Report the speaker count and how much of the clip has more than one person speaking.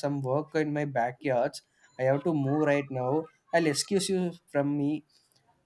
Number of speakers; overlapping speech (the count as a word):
one, no overlap